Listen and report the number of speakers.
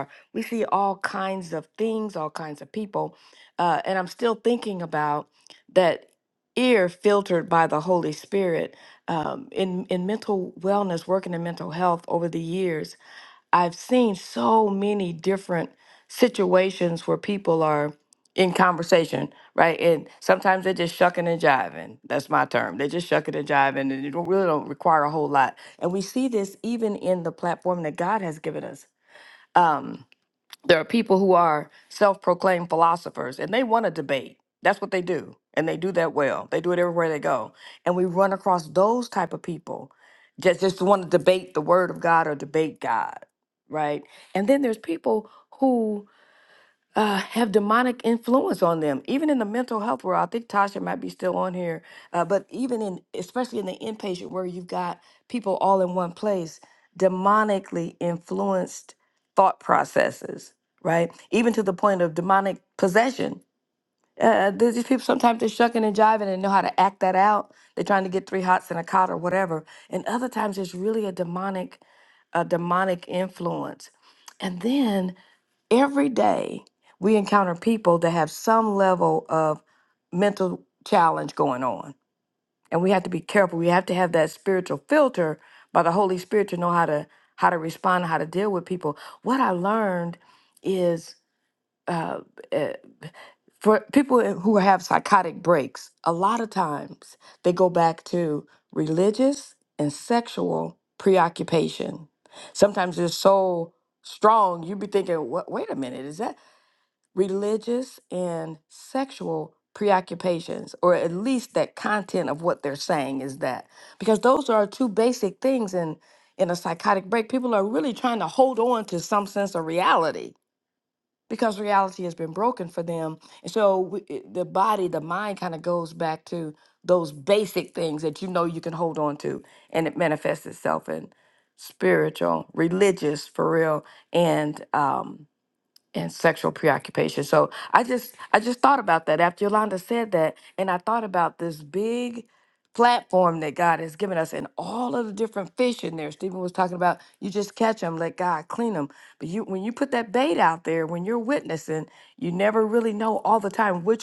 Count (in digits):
1